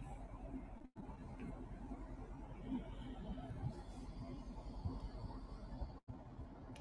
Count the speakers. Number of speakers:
0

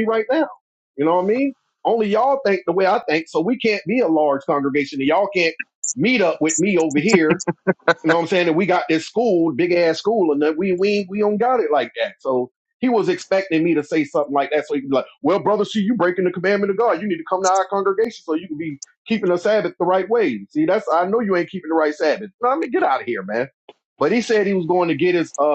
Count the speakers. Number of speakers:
1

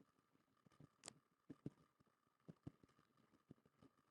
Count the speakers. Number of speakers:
0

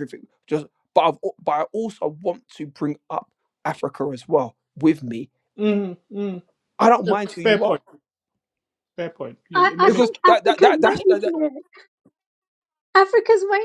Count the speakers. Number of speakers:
3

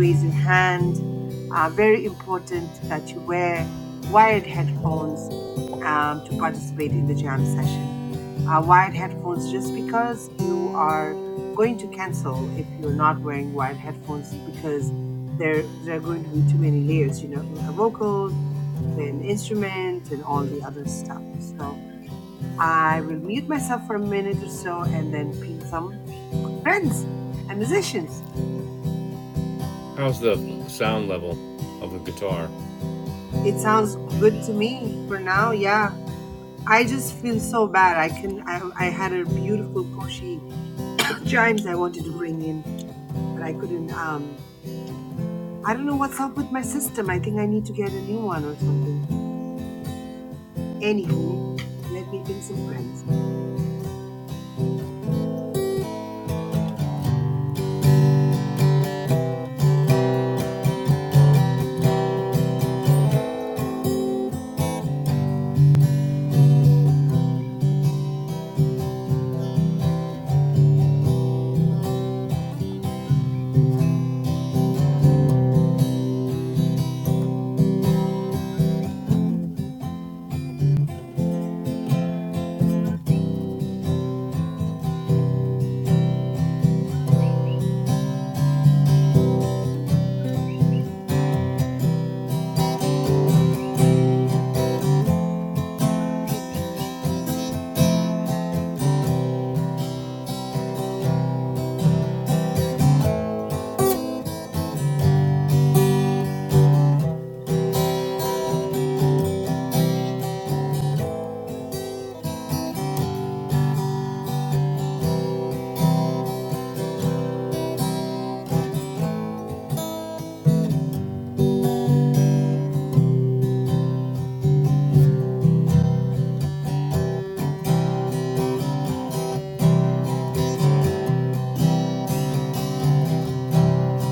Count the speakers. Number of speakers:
2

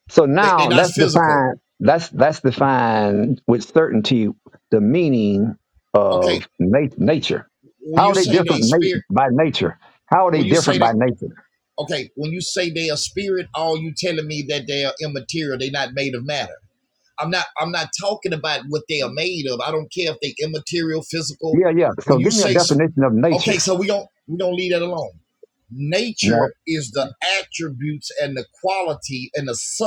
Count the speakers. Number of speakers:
2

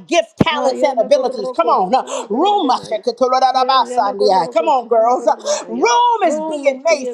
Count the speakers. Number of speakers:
2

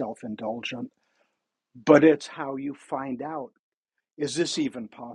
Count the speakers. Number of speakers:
1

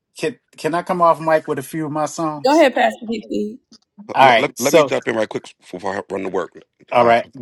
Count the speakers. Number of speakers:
3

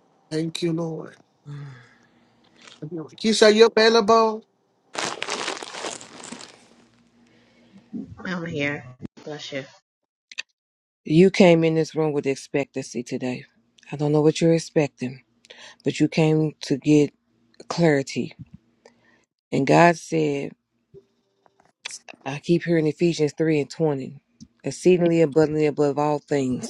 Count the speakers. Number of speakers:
3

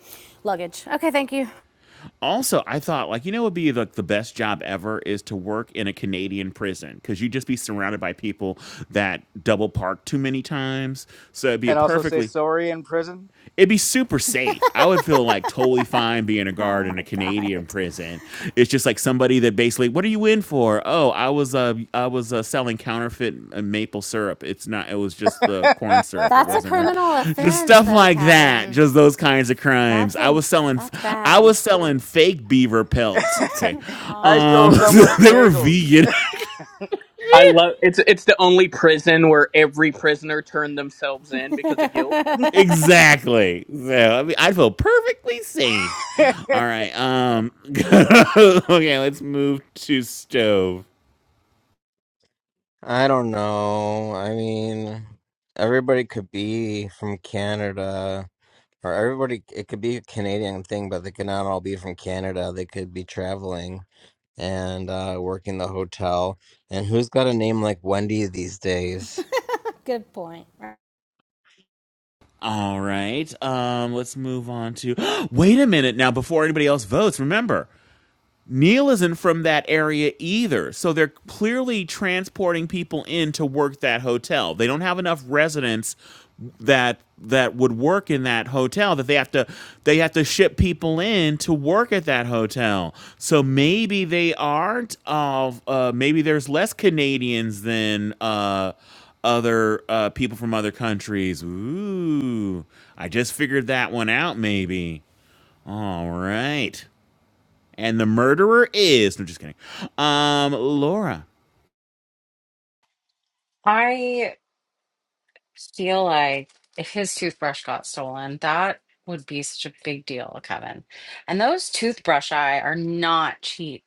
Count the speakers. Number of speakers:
6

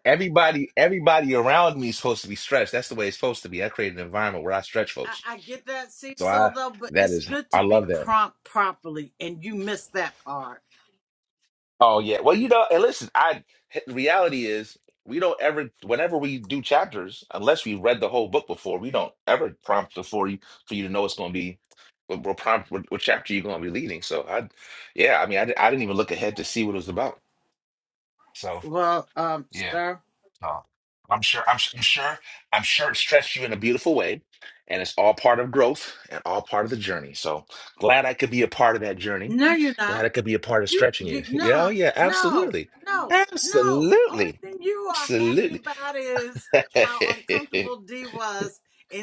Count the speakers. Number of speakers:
2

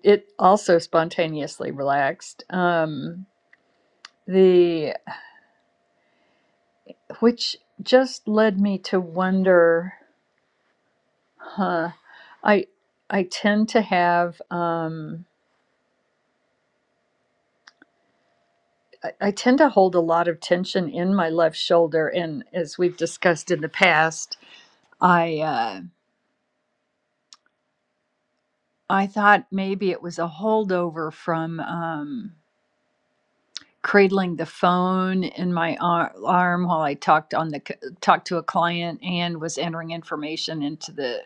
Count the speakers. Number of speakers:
1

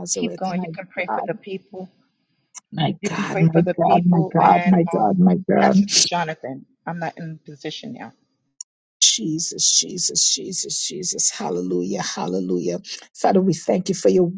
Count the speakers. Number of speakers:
2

